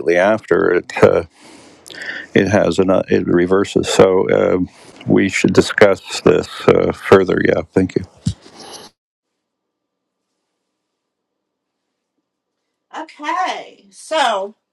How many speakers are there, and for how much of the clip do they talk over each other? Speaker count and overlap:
two, no overlap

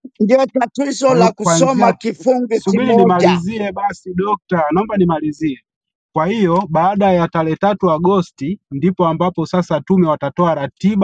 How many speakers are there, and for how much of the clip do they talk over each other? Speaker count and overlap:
two, about 15%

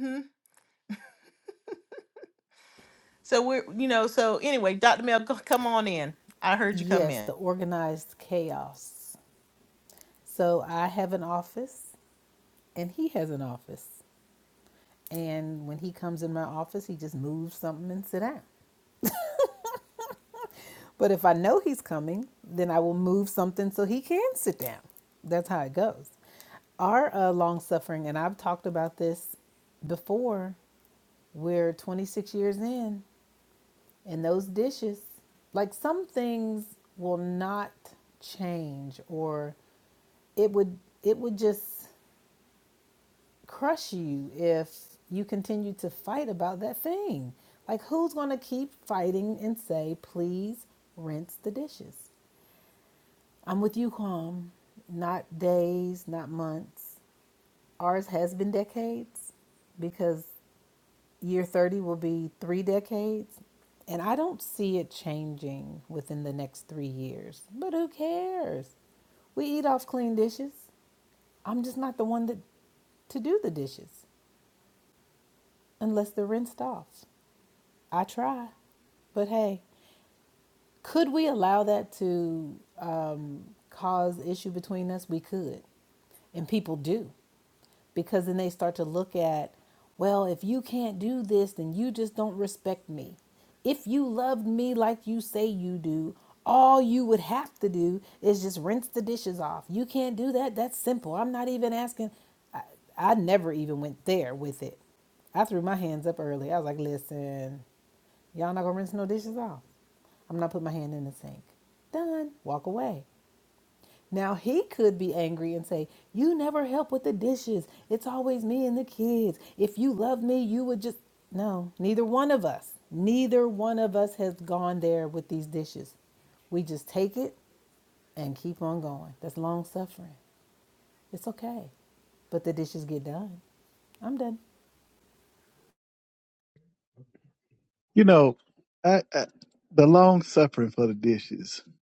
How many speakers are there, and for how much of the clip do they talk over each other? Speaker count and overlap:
three, under 1%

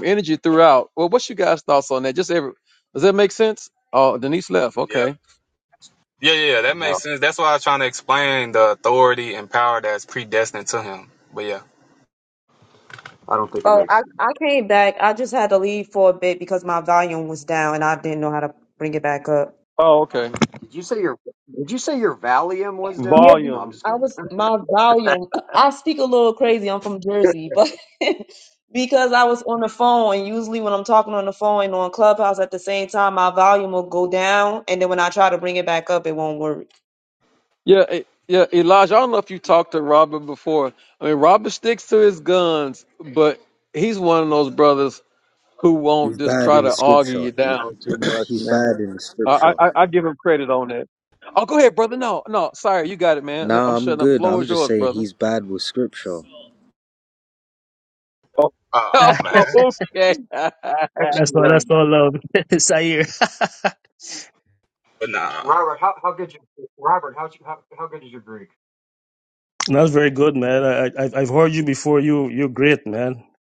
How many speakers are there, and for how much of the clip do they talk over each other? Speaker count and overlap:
six, about 10%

